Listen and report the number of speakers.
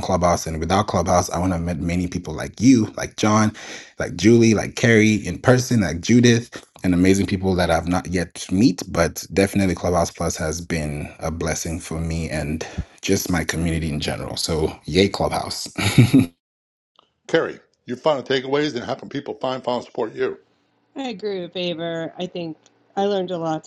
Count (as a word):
three